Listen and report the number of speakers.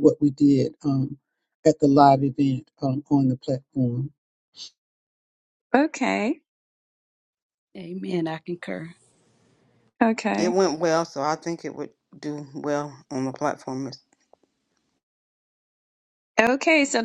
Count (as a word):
four